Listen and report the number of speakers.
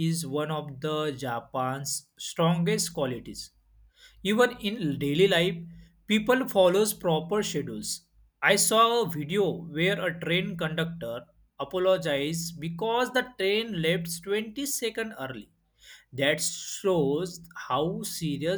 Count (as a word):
one